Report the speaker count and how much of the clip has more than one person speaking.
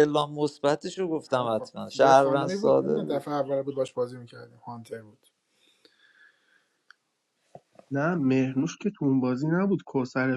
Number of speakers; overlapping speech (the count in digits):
3, about 18%